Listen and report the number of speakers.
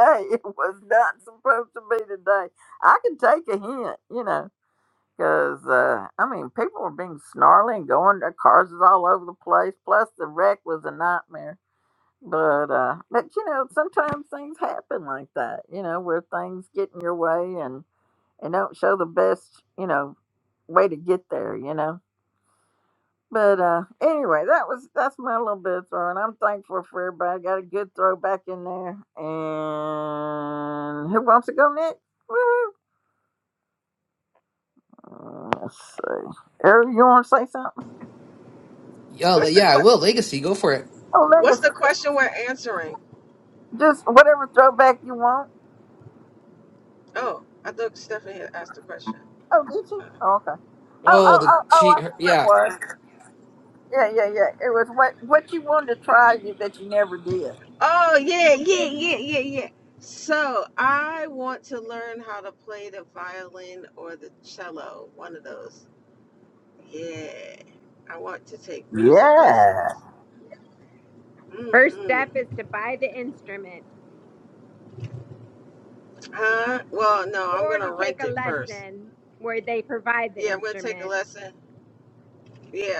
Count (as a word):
four